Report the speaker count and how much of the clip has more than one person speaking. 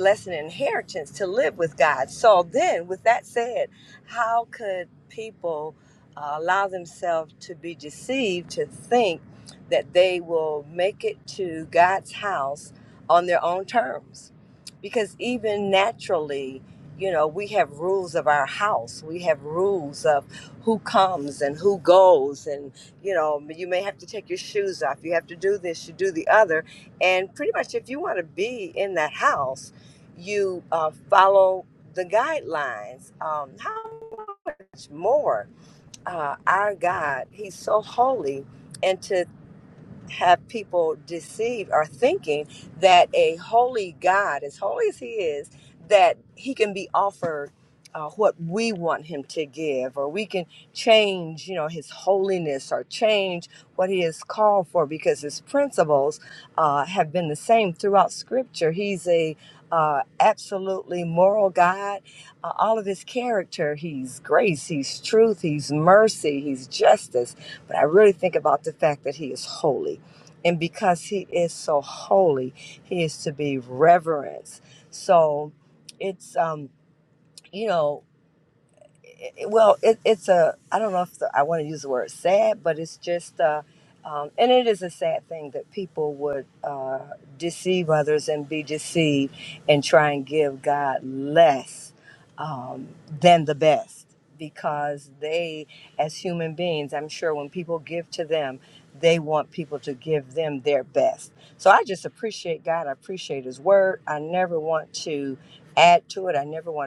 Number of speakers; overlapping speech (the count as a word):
one, no overlap